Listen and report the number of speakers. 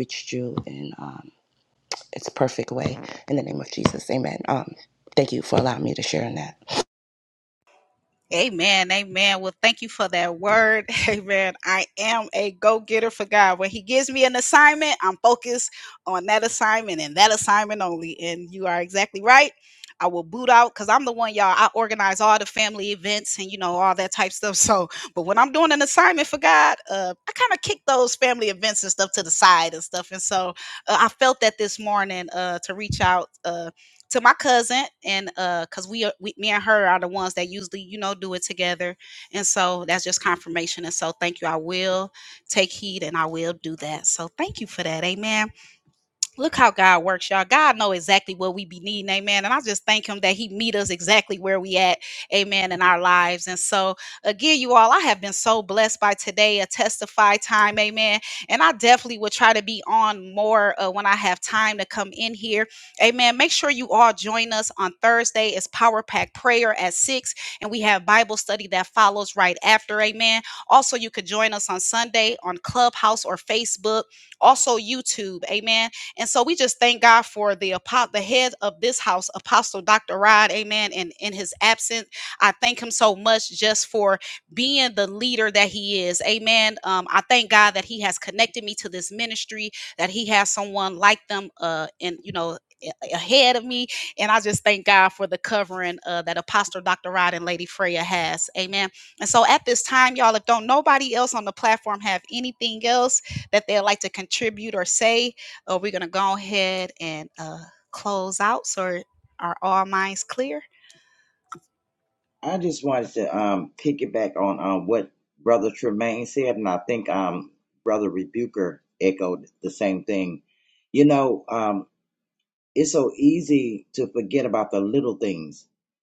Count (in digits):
3